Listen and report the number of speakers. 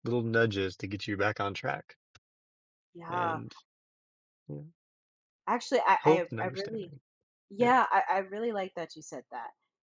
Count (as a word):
two